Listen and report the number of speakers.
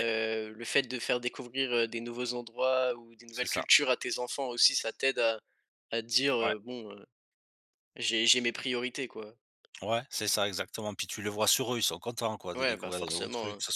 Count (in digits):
2